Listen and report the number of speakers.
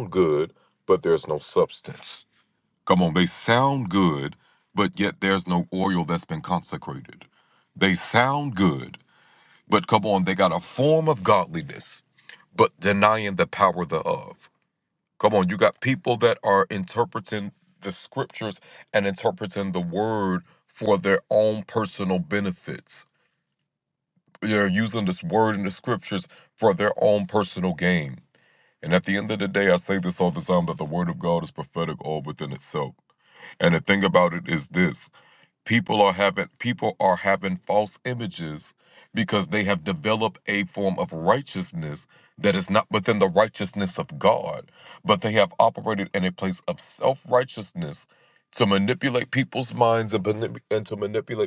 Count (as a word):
one